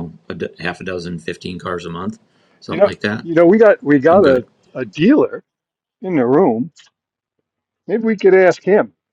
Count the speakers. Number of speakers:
2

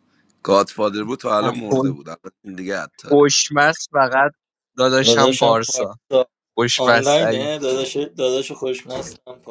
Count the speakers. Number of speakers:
3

